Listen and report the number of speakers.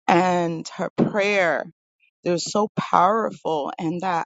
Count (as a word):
one